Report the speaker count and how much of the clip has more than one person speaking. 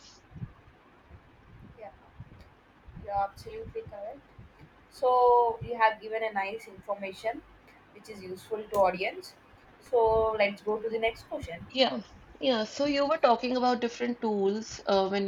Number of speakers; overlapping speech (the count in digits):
2, no overlap